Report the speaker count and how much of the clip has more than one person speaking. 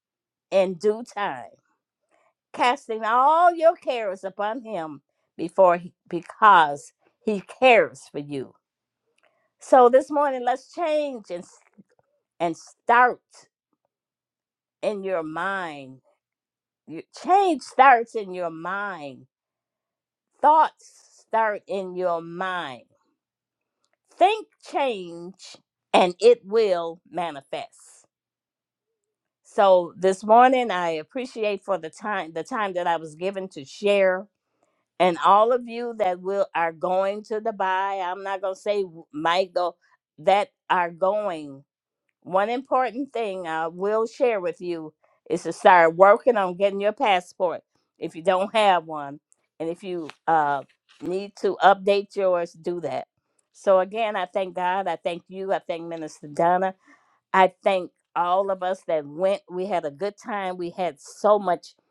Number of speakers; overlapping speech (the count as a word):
one, no overlap